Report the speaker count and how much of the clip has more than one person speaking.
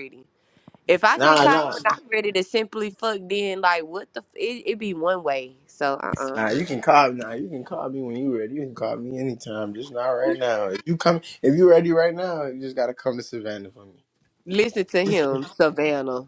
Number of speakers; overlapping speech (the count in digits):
2, about 4%